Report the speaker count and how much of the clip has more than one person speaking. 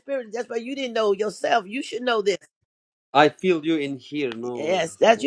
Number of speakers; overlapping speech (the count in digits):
2, about 14%